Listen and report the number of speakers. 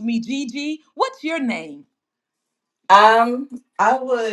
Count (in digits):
2